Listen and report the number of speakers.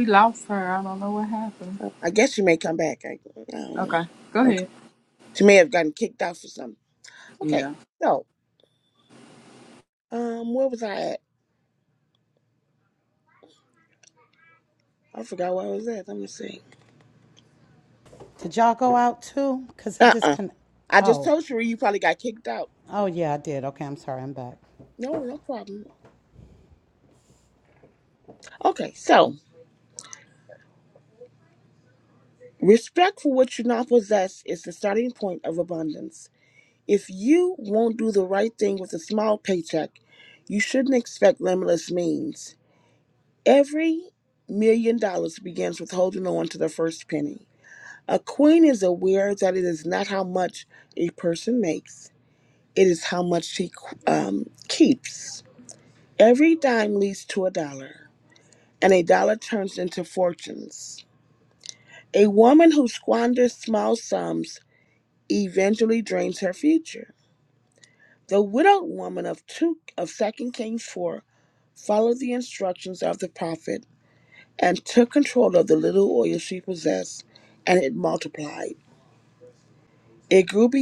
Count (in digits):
3